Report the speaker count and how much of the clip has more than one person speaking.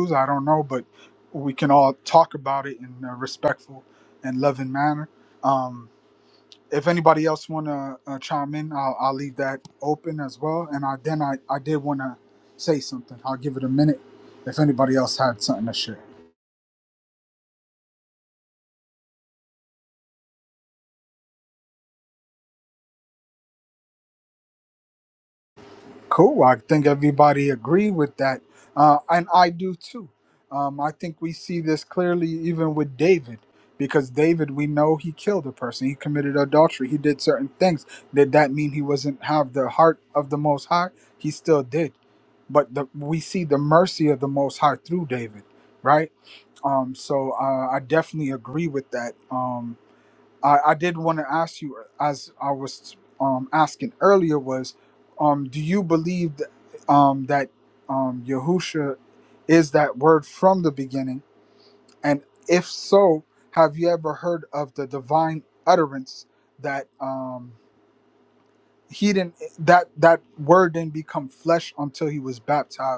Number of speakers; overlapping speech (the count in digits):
1, no overlap